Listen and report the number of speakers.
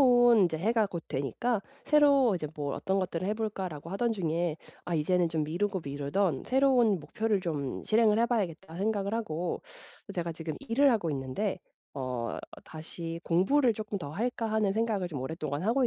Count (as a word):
one